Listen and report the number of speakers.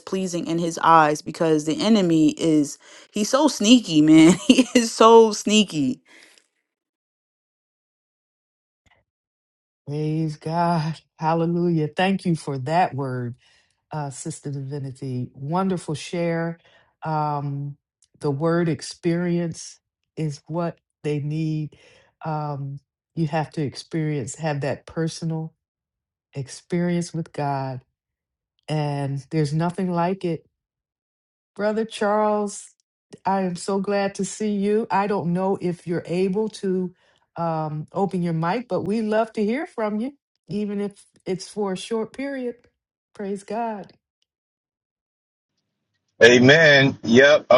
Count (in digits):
3